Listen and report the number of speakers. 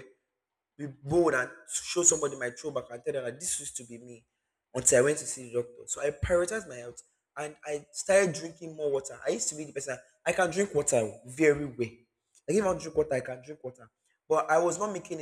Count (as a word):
one